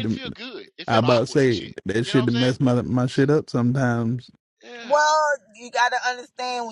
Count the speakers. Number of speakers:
3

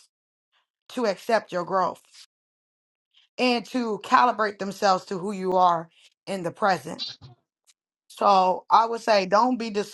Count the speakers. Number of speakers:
1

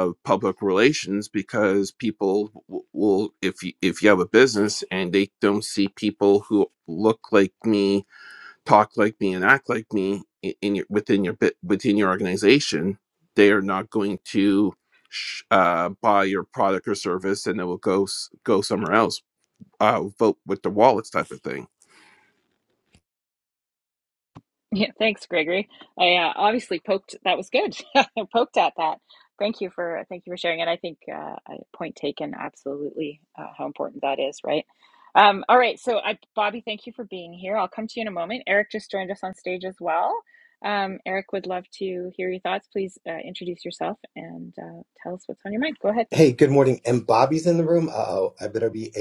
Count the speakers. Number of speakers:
3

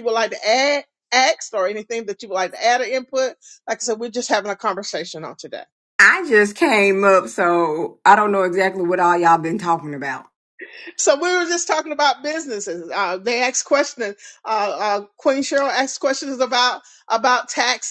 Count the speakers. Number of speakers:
2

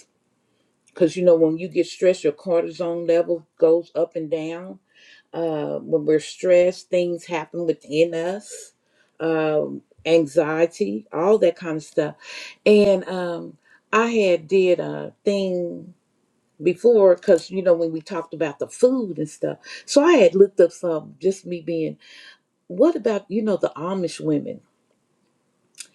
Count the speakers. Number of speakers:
1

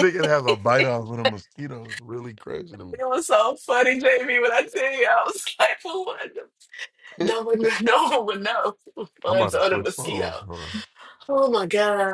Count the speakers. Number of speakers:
2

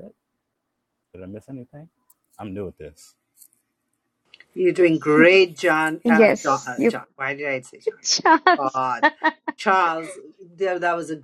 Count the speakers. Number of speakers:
3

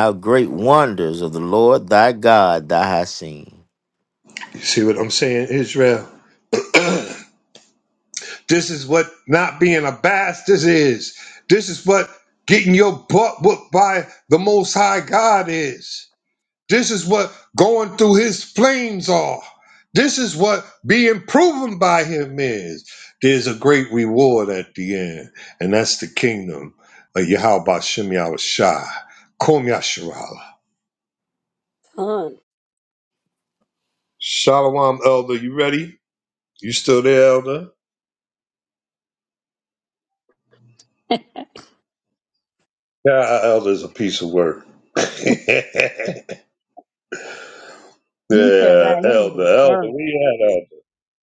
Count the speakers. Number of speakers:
3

